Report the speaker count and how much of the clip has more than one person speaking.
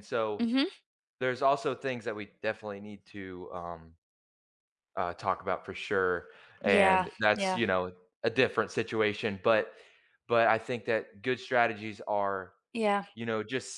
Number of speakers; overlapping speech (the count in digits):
2, about 7%